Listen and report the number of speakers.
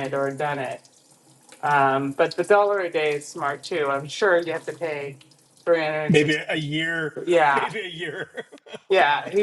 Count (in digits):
2